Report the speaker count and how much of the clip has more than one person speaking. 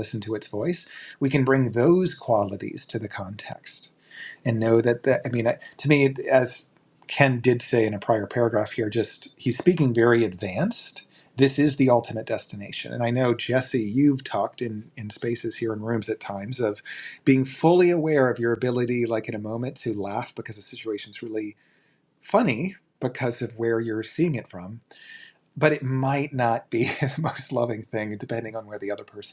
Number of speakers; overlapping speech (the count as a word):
one, no overlap